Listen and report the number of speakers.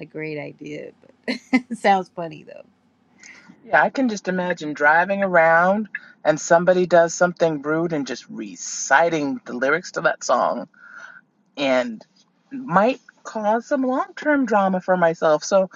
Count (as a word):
two